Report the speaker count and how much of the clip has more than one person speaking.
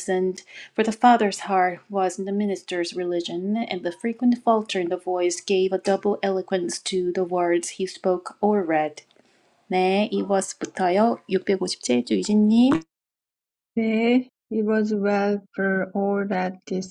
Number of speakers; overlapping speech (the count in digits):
2, no overlap